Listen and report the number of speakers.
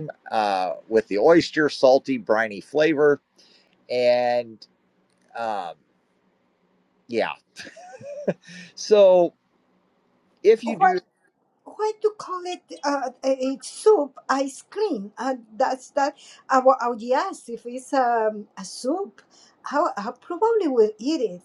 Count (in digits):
2